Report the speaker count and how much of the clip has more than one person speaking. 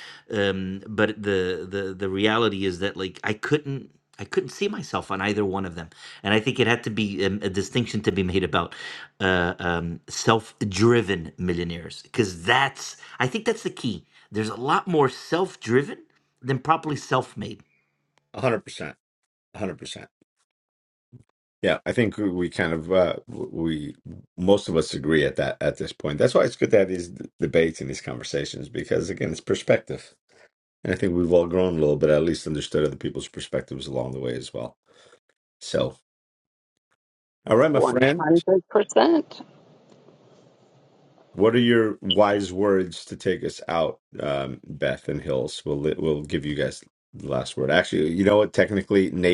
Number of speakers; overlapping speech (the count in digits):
3, about 1%